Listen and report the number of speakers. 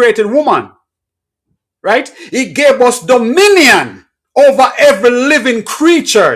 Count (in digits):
1